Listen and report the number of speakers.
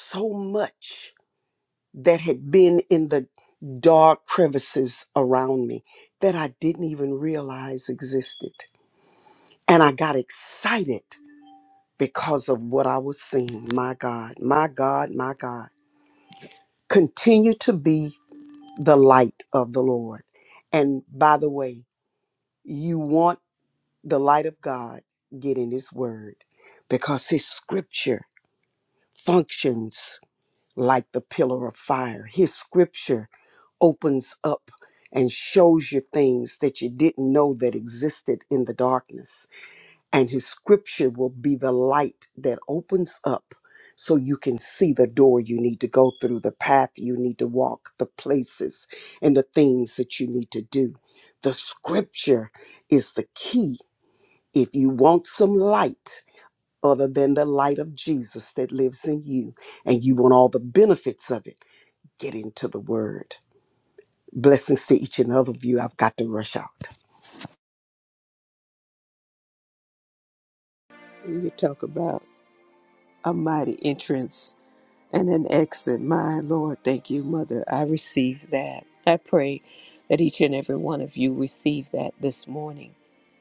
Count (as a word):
two